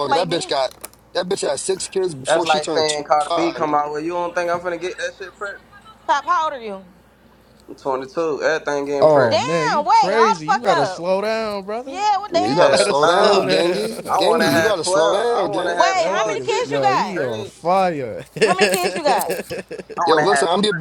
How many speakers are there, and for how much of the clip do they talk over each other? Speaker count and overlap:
4, about 47%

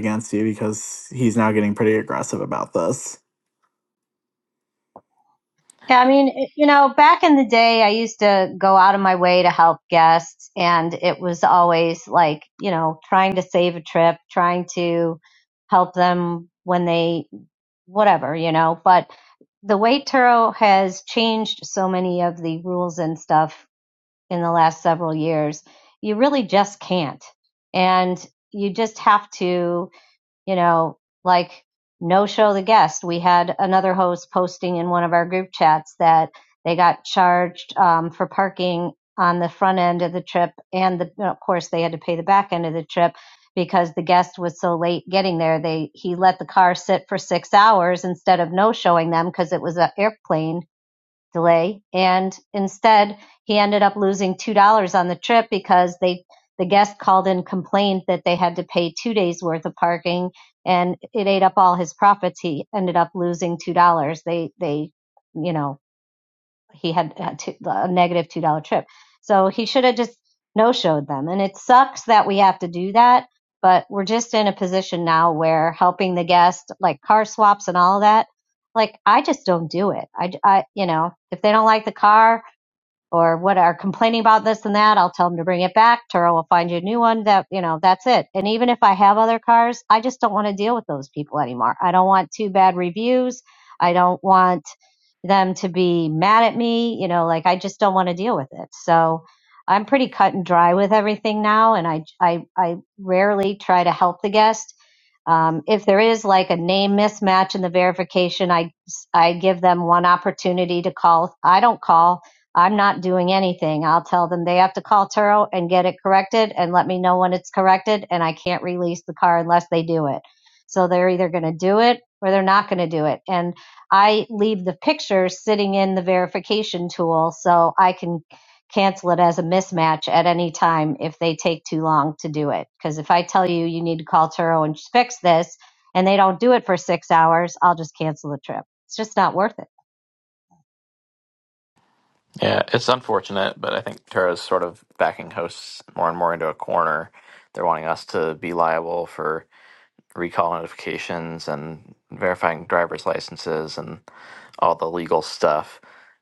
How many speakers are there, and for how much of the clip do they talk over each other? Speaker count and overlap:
3, no overlap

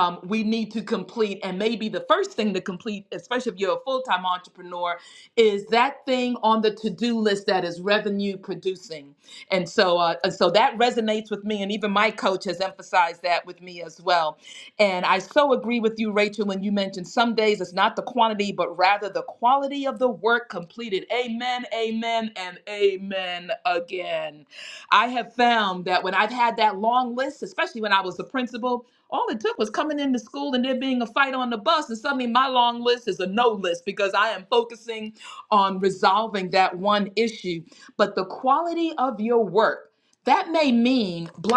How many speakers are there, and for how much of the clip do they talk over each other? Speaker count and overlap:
1, no overlap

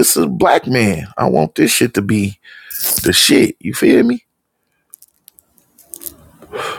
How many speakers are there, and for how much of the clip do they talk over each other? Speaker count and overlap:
1, no overlap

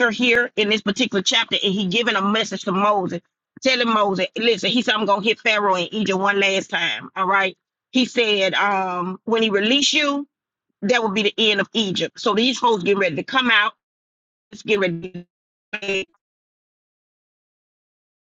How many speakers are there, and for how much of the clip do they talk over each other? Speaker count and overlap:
1, no overlap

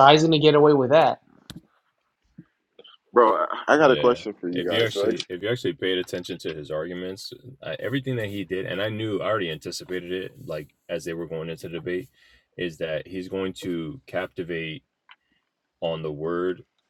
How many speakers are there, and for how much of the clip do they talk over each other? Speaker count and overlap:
3, about 7%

